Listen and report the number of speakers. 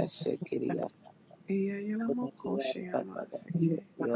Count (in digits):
2